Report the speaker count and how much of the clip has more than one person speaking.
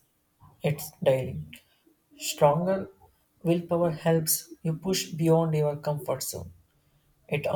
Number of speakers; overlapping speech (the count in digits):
1, no overlap